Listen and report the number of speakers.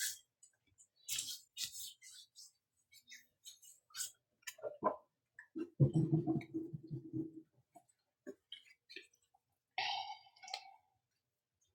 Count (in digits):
0